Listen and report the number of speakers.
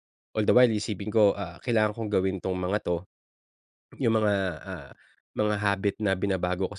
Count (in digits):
1